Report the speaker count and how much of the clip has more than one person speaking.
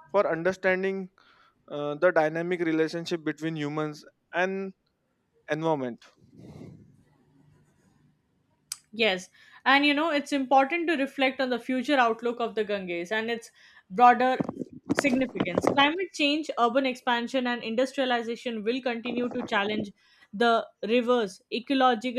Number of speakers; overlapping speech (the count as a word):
two, no overlap